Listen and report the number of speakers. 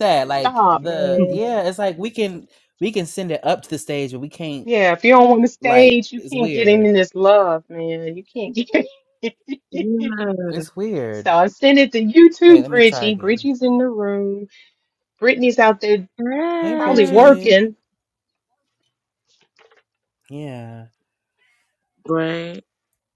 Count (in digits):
3